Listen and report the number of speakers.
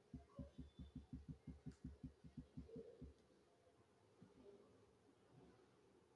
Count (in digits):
0